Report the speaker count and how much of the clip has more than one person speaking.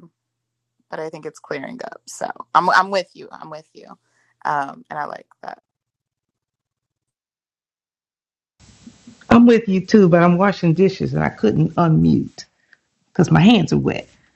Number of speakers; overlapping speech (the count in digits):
2, no overlap